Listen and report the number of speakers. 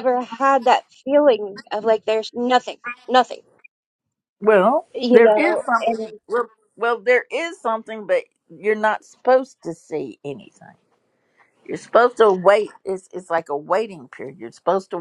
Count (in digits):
2